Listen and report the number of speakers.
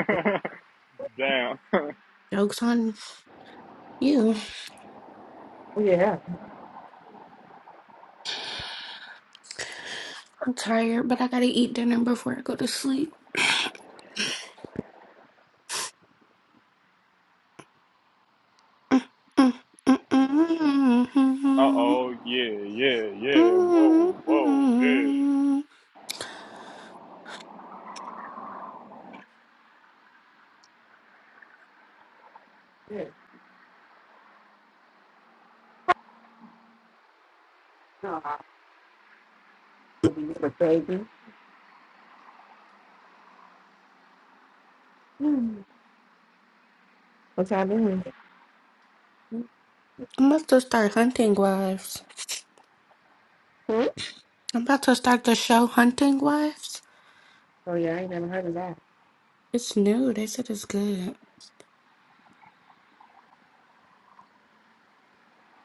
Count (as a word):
three